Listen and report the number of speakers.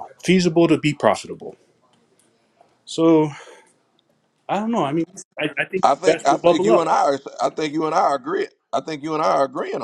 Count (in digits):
2